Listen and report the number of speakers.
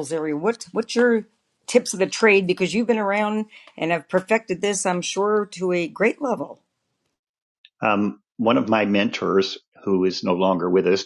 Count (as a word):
two